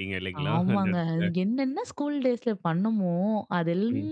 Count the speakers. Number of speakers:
two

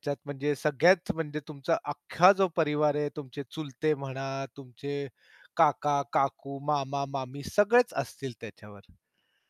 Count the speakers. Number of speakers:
one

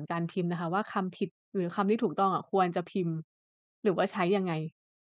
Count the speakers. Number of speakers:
one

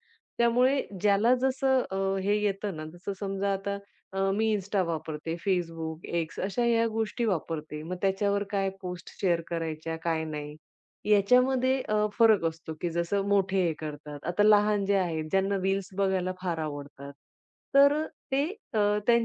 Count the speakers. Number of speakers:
one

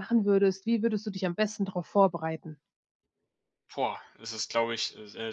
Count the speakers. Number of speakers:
two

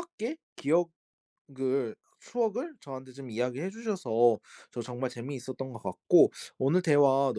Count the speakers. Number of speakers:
one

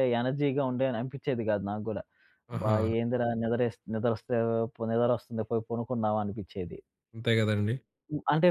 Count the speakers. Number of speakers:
two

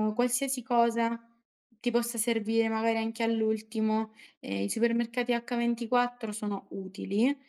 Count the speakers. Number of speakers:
one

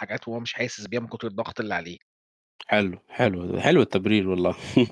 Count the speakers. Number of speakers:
two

